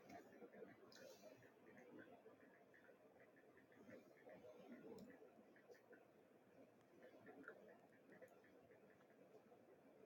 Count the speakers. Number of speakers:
zero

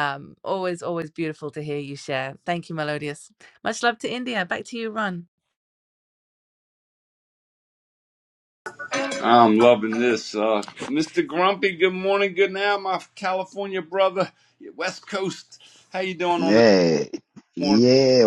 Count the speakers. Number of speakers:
three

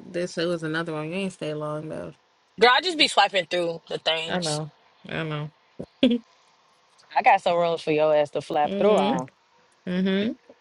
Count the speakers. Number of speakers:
three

